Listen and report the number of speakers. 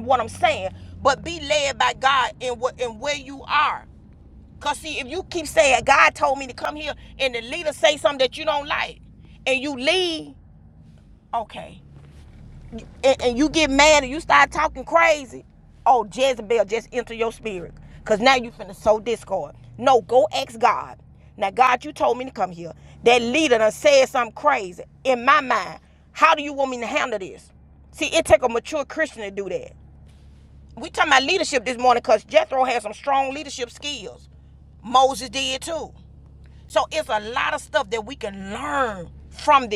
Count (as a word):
one